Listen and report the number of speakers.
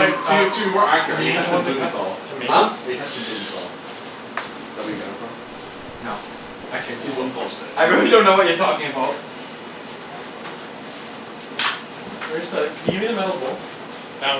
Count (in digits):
3